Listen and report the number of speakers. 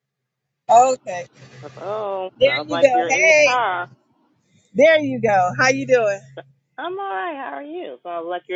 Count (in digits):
2